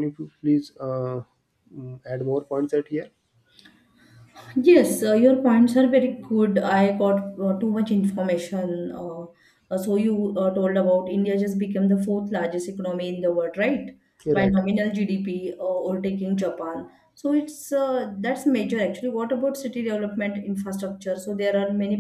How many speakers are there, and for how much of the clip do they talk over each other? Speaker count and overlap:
2, about 1%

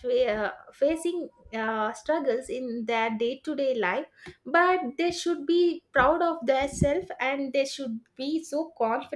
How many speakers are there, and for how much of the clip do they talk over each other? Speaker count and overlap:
1, no overlap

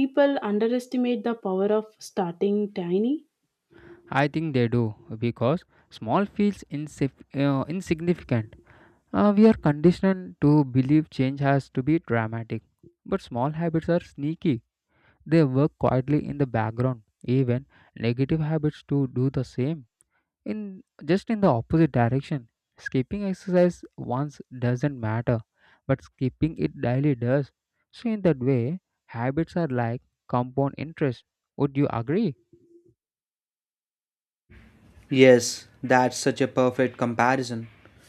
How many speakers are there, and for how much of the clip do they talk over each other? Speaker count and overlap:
3, no overlap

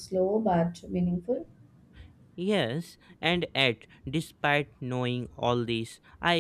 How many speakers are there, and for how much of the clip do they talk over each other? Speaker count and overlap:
2, no overlap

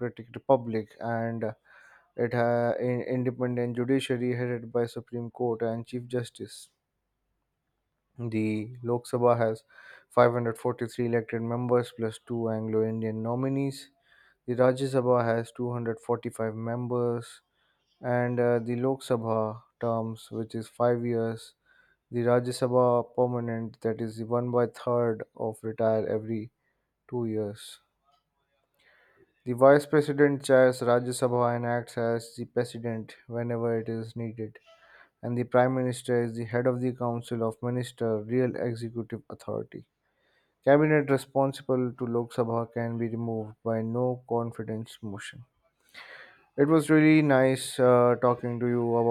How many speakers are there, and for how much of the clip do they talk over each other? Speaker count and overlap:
1, no overlap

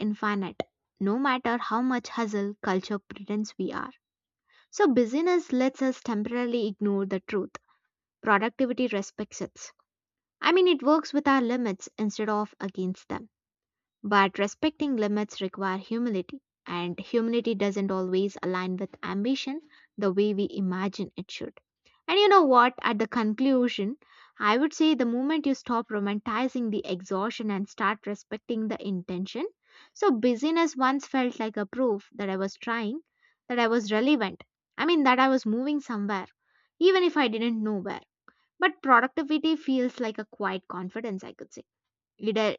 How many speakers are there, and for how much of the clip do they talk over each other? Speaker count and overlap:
1, no overlap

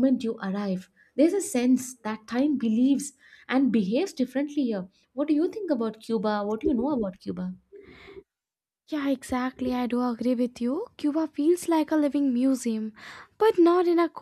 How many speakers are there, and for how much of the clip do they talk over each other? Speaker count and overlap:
2, no overlap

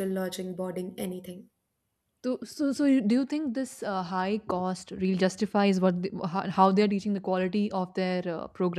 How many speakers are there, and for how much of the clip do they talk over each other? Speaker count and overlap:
2, no overlap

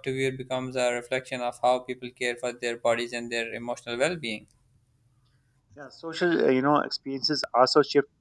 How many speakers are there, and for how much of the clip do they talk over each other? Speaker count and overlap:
2, no overlap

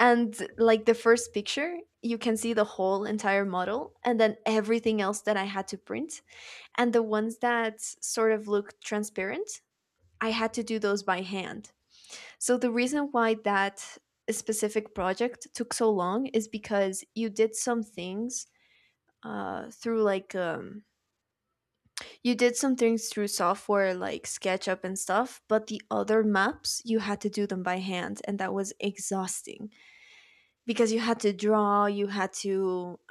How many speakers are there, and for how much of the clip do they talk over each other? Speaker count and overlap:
1, no overlap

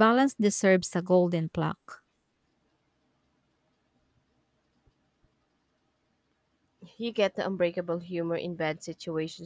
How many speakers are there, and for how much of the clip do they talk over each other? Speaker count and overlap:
2, no overlap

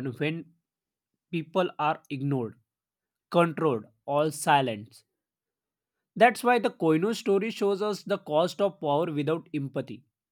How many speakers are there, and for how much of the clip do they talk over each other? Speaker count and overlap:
1, no overlap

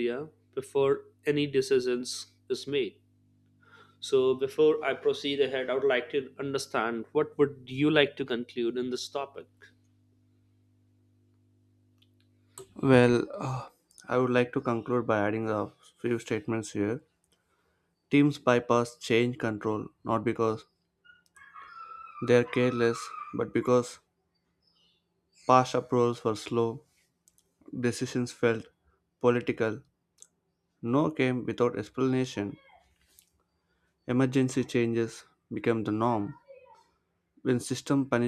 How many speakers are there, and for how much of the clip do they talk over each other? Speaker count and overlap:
2, no overlap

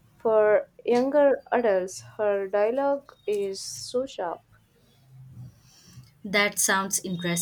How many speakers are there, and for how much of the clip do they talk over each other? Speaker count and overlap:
2, no overlap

